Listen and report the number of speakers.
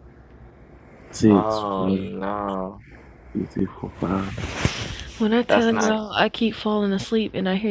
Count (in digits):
3